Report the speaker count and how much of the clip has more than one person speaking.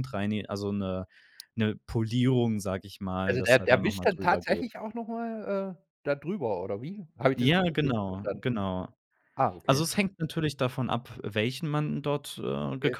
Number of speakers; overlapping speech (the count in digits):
2, about 21%